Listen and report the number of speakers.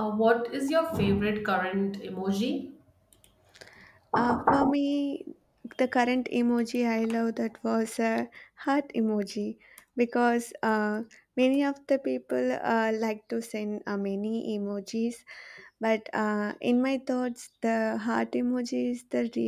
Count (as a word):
two